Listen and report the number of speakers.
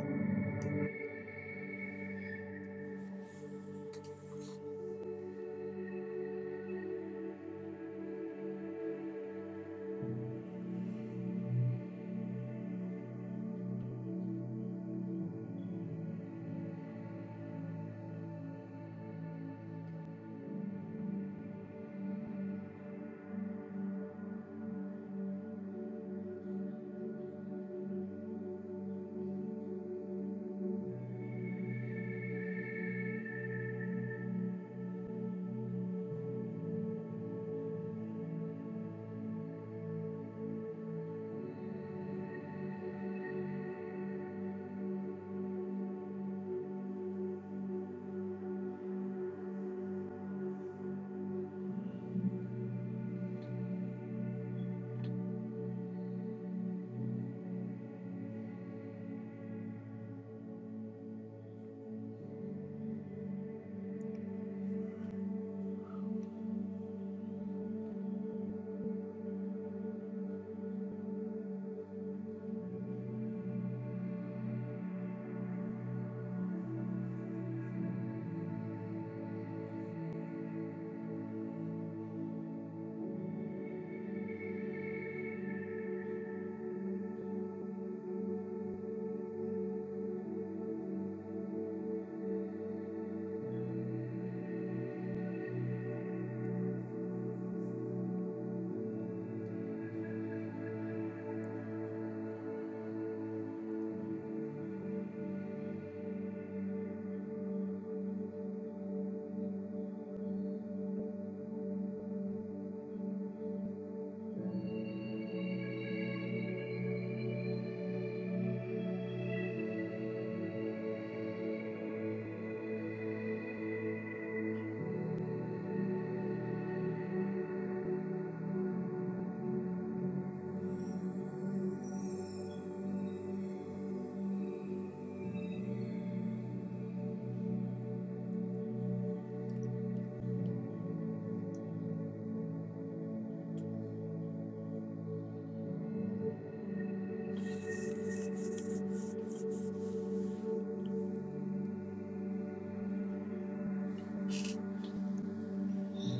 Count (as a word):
zero